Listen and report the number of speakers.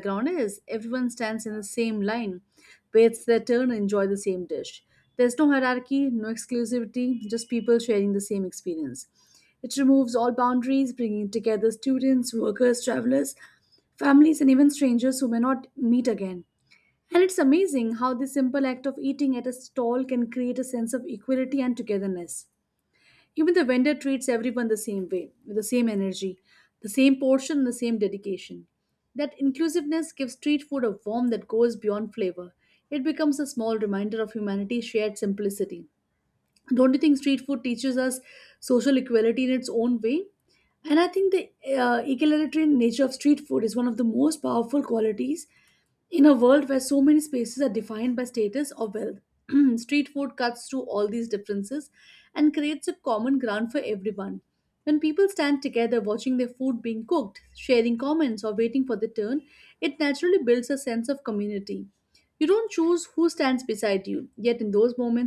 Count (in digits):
1